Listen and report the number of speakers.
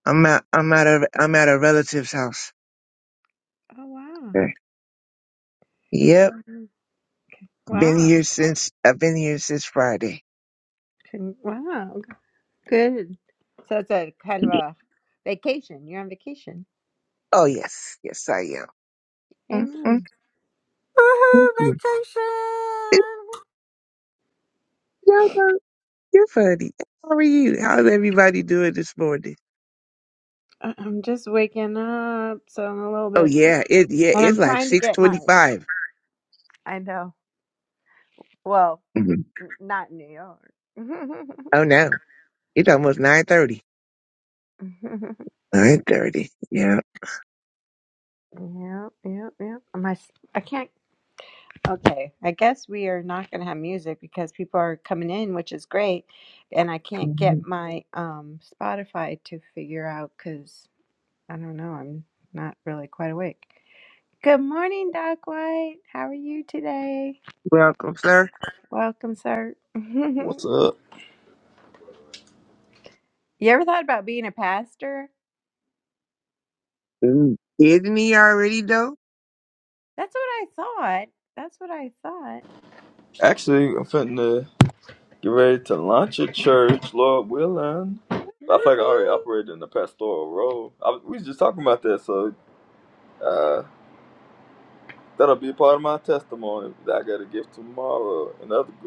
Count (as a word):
four